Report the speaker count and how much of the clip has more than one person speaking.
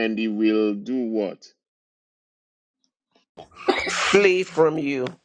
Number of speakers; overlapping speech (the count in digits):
2, no overlap